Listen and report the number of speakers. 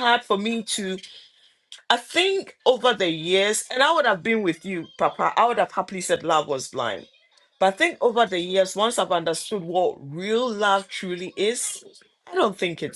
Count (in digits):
1